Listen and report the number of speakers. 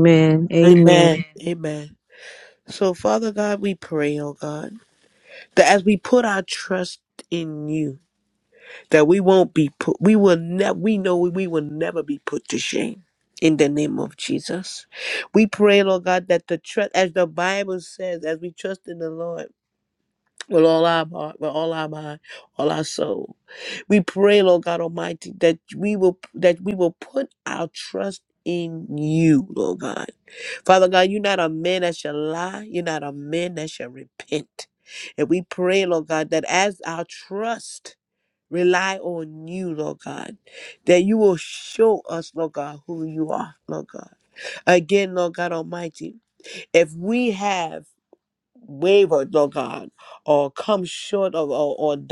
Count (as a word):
two